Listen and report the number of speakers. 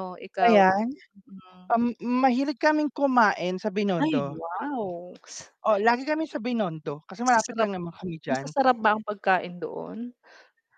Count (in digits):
2